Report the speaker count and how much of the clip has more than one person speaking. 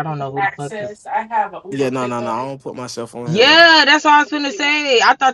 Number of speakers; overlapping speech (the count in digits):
3, about 32%